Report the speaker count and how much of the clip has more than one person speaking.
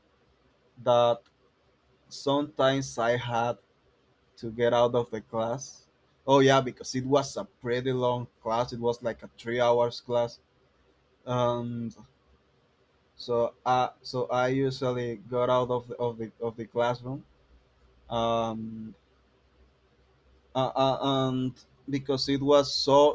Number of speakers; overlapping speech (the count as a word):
one, no overlap